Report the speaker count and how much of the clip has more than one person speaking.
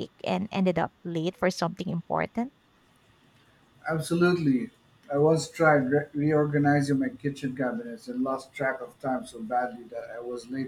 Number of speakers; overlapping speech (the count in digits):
2, no overlap